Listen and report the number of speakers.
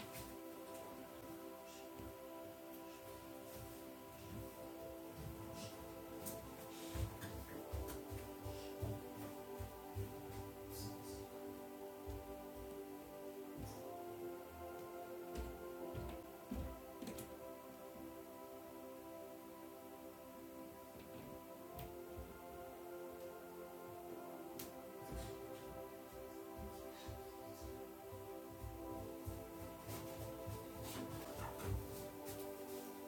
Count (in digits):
0